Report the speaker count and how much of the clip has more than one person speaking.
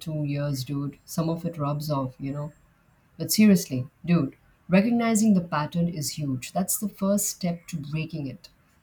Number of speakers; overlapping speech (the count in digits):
1, no overlap